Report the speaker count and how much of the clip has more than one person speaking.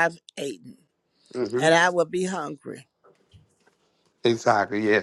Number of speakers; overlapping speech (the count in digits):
2, about 2%